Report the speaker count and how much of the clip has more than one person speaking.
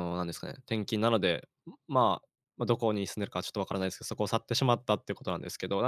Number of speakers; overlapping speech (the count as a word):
one, no overlap